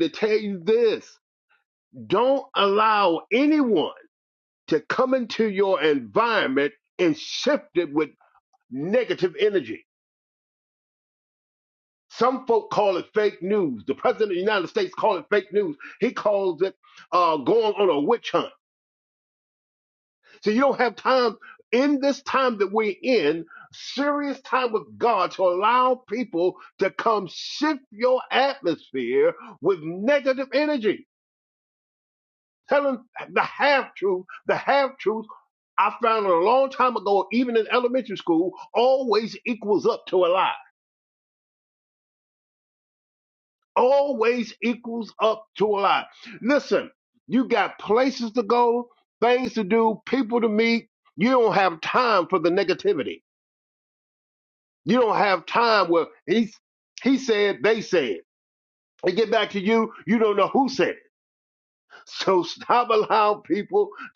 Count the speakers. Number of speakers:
one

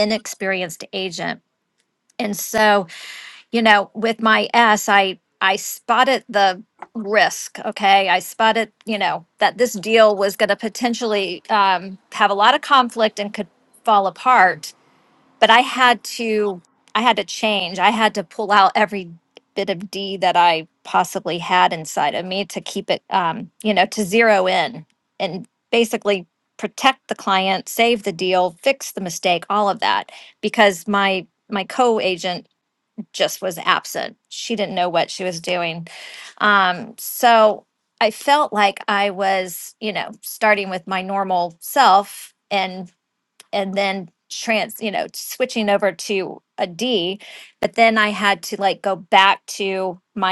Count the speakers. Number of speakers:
one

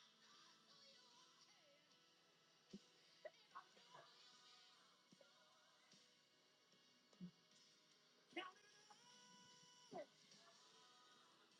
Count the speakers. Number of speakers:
zero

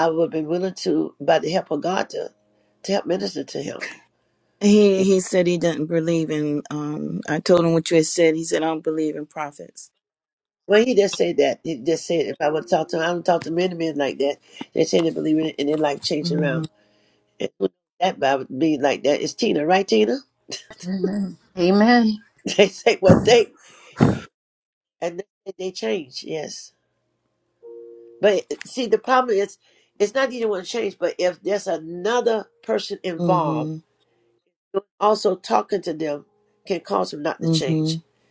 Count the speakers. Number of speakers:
three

